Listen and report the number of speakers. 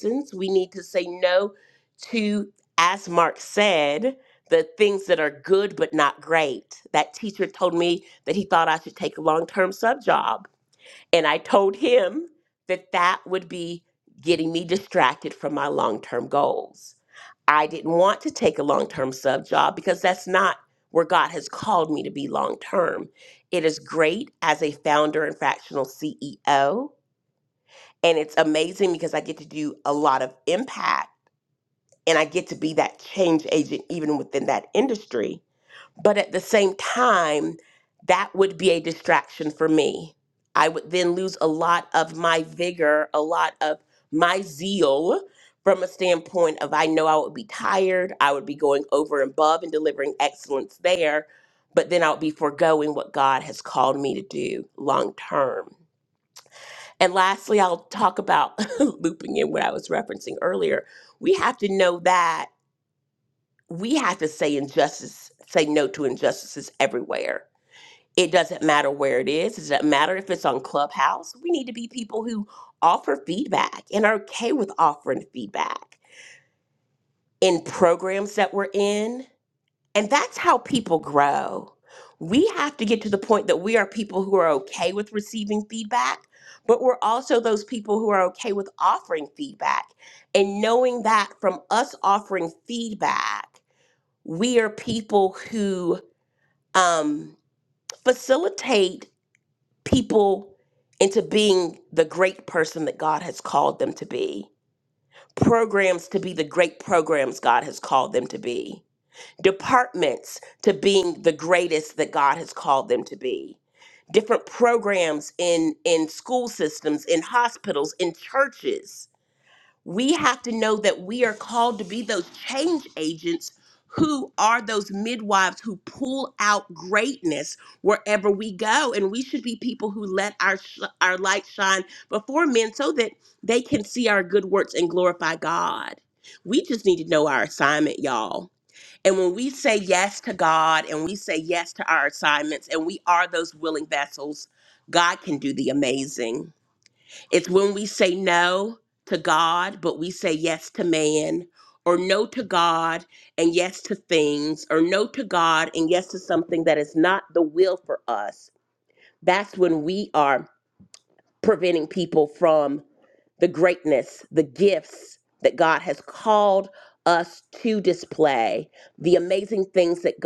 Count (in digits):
1